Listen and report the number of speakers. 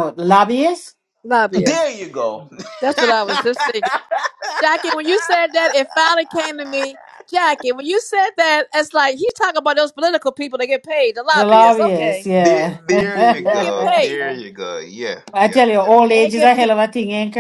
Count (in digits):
3